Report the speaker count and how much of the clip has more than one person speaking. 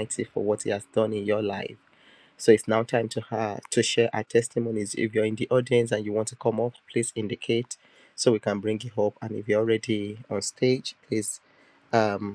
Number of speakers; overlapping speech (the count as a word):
one, no overlap